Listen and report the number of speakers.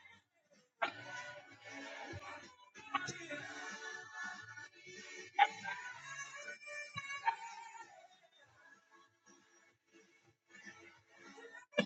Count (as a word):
zero